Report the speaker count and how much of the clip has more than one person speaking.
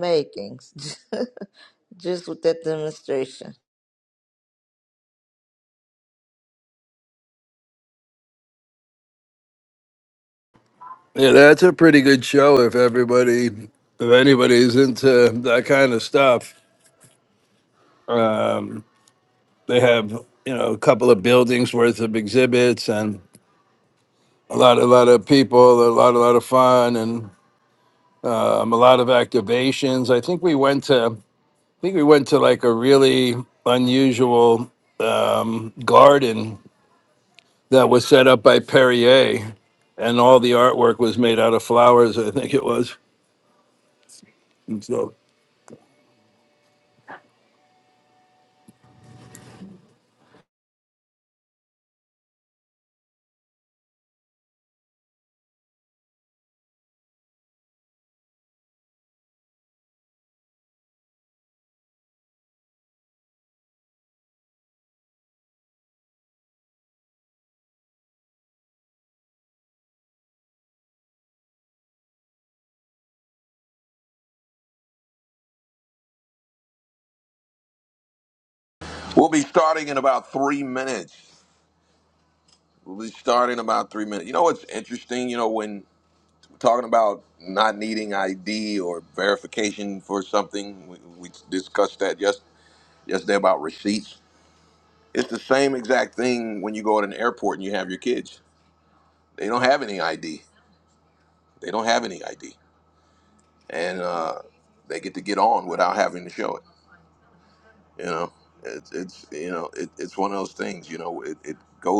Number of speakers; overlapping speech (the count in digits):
3, no overlap